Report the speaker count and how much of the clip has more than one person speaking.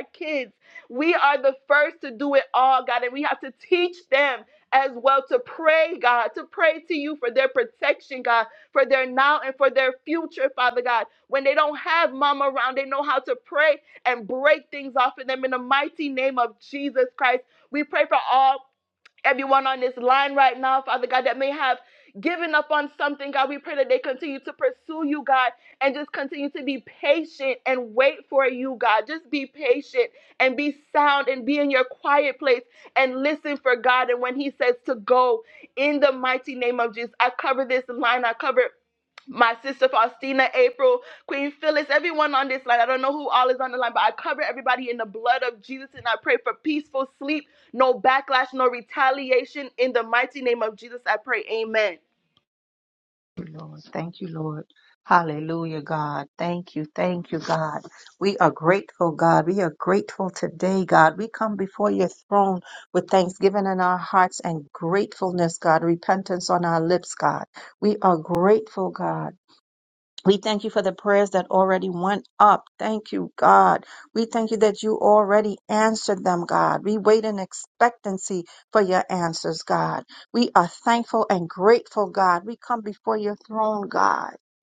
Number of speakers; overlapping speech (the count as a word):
two, no overlap